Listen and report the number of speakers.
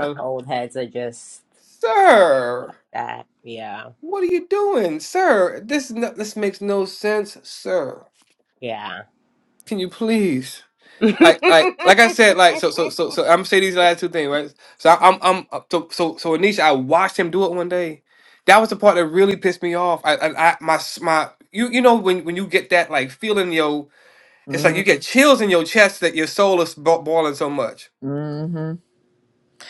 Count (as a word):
three